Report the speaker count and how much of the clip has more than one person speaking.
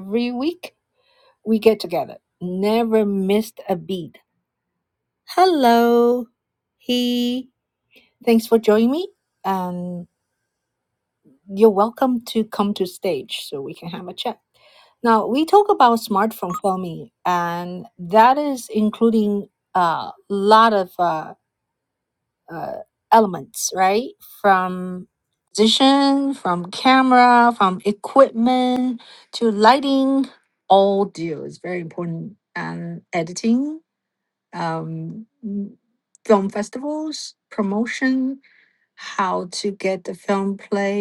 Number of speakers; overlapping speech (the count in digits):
1, no overlap